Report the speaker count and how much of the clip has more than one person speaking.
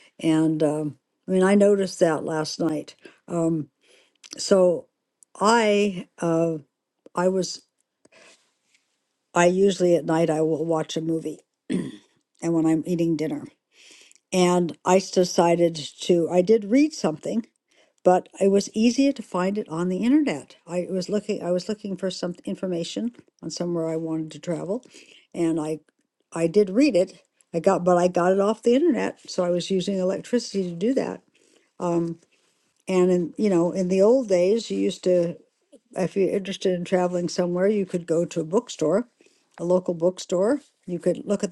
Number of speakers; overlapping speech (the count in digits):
1, no overlap